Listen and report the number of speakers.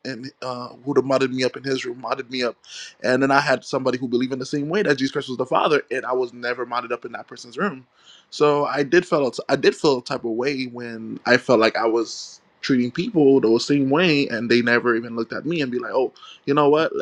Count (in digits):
1